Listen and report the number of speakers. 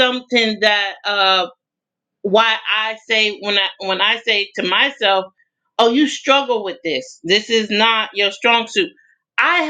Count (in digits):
1